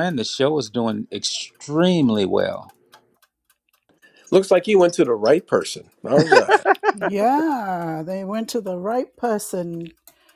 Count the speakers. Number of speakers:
3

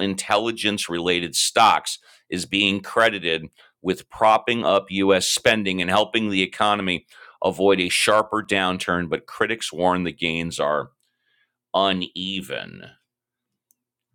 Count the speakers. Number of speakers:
1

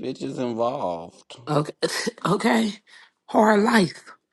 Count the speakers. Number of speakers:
2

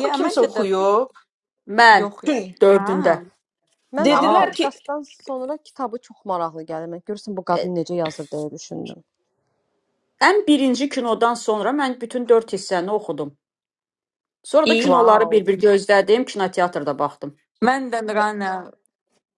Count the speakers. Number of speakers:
4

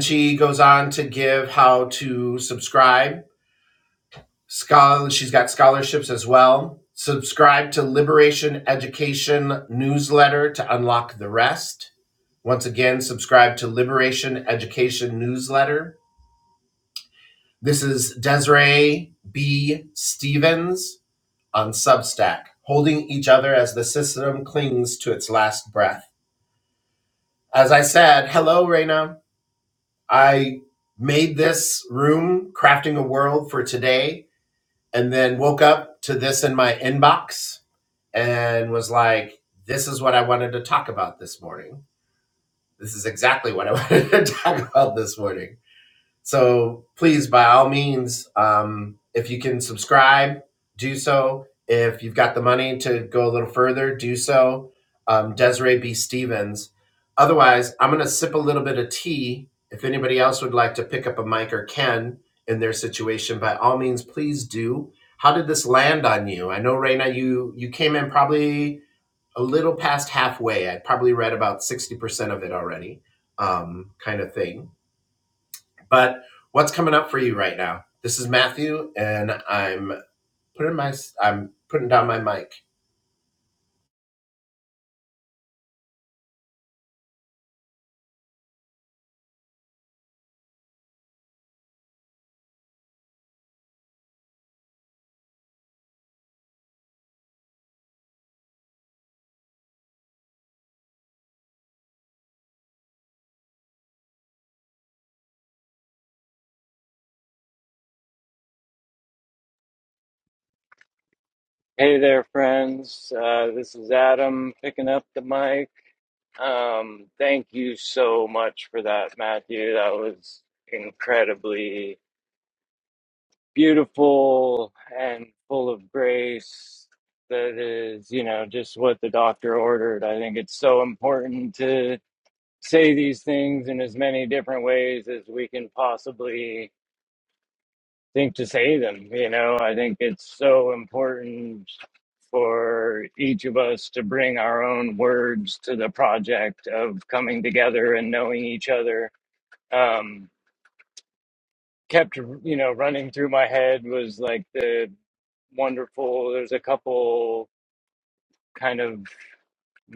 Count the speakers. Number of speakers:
2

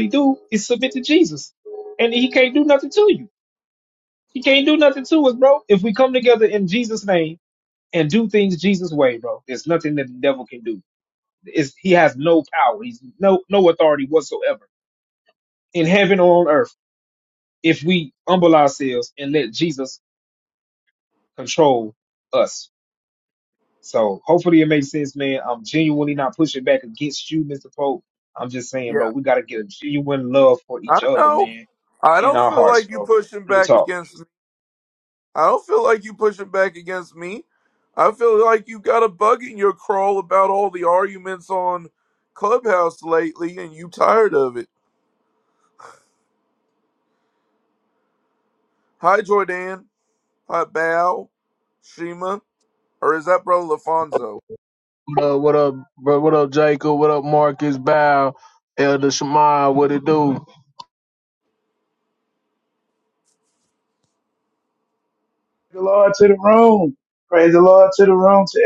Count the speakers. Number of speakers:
4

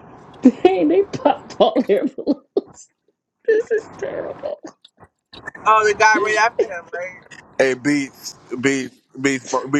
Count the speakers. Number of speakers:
3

